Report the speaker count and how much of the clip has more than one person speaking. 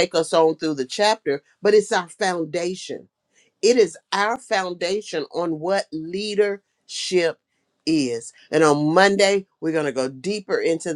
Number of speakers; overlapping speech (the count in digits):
1, no overlap